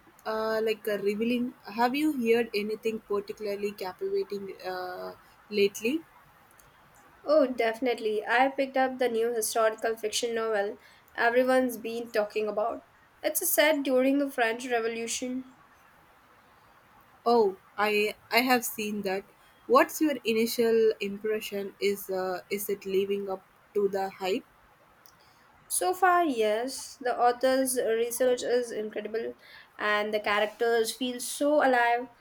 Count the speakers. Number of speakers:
2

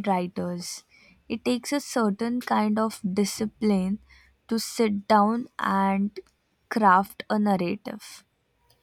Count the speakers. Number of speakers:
1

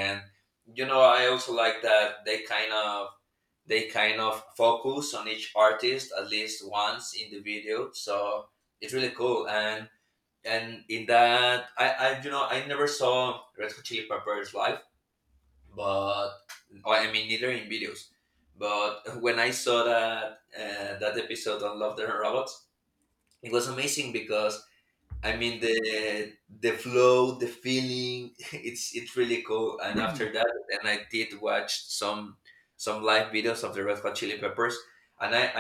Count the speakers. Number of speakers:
1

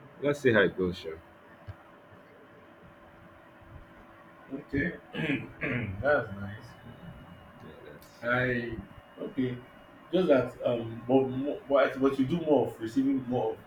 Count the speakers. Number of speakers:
2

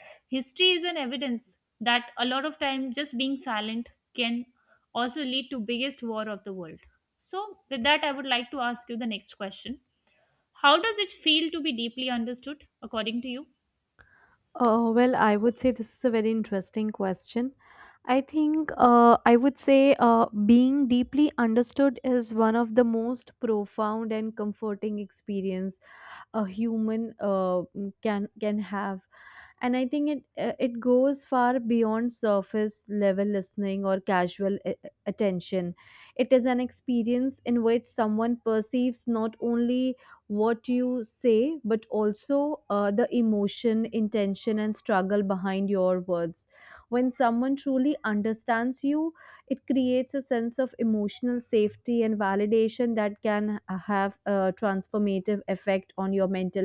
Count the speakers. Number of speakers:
2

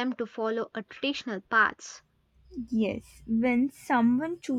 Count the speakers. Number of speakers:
2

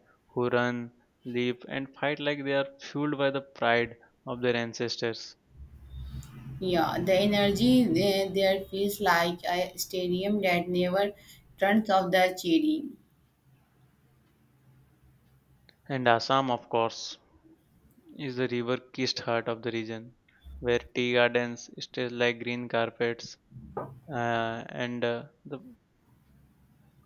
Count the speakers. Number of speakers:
2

